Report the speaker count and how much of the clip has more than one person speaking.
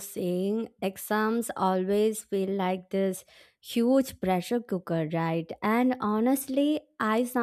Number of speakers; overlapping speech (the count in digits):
1, no overlap